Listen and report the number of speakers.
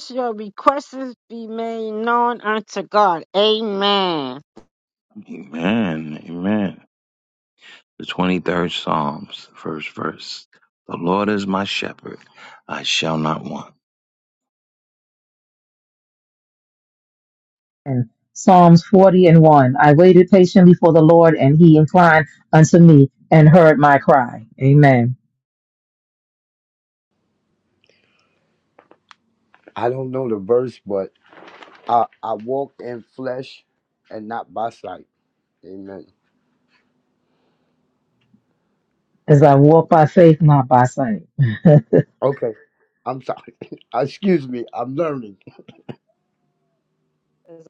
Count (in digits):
4